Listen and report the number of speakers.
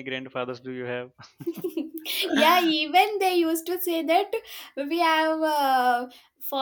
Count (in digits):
2